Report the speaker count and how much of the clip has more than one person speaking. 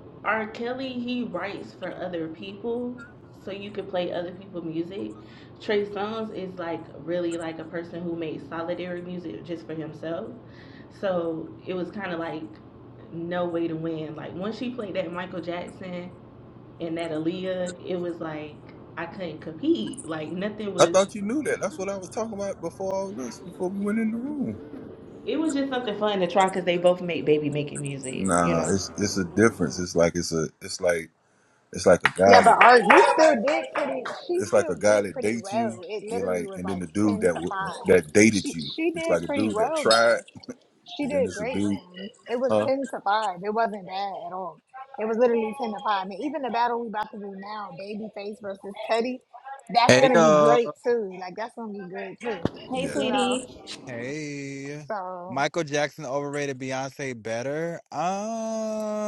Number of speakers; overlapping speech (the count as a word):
four, about 14%